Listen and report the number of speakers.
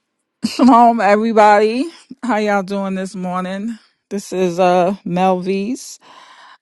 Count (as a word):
one